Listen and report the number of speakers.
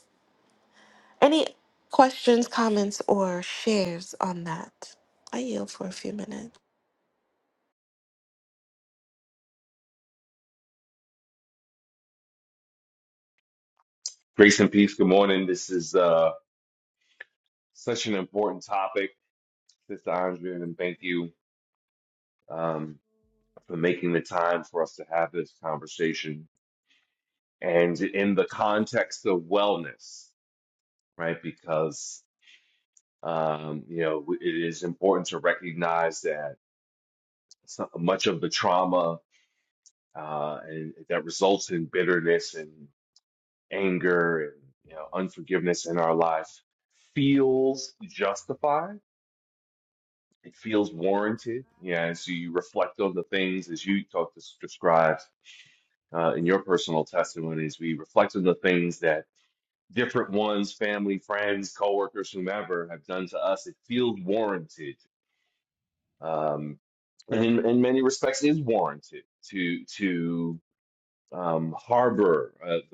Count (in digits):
2